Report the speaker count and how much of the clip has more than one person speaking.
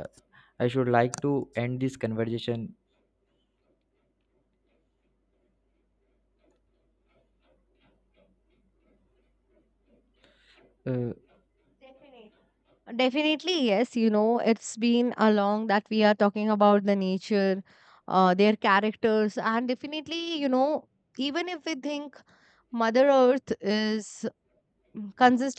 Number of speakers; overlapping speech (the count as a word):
two, no overlap